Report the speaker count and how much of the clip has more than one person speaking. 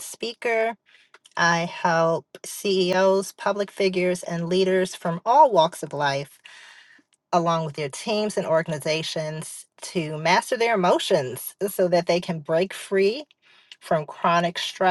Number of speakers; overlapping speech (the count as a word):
one, no overlap